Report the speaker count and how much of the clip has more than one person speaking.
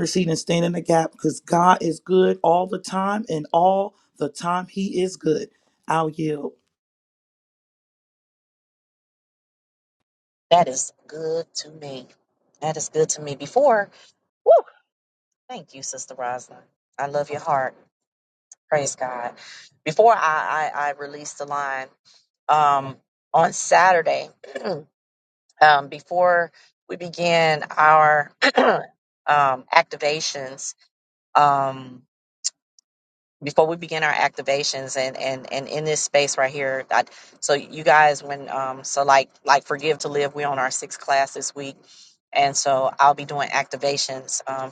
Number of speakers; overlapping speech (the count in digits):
2, no overlap